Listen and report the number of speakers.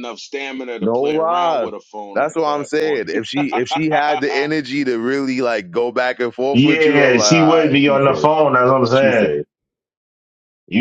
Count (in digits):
3